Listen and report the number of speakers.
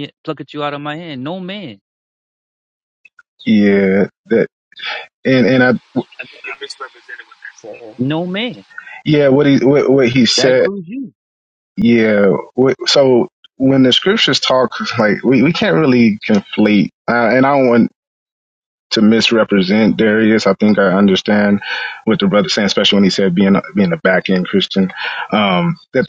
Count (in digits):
3